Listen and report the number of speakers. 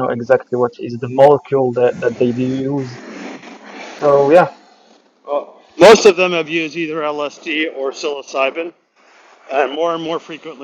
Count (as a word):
two